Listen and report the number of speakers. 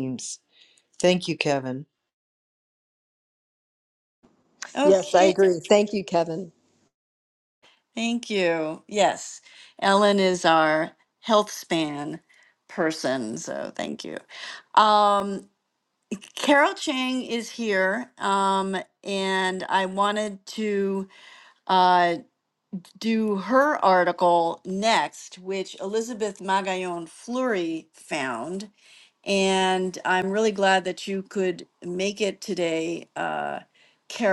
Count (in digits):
3